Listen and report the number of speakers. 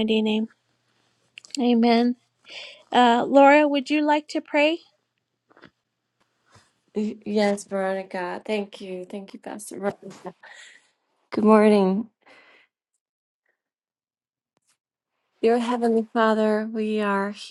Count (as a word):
two